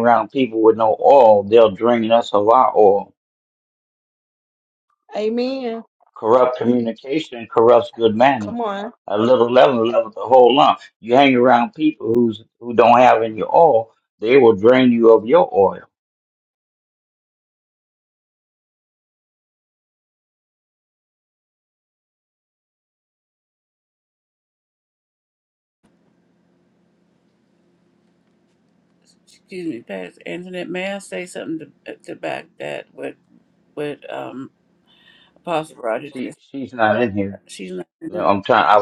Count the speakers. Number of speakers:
3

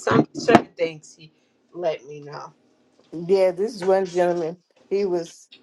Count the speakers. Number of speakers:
2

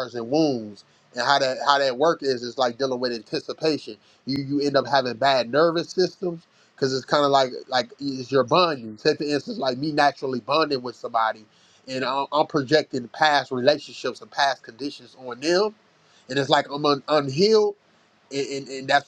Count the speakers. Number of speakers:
1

